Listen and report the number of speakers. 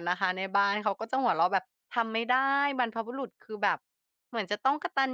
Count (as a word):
one